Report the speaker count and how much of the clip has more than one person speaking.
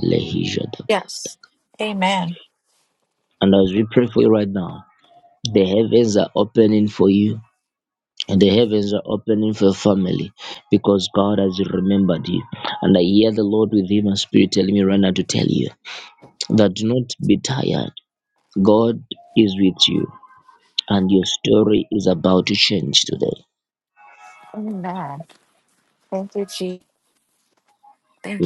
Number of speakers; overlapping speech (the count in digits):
2, under 1%